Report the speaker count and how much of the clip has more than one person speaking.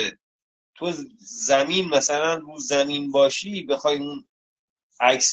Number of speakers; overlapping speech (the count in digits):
1, no overlap